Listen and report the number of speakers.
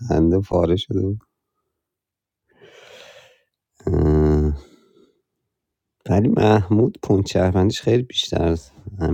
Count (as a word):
one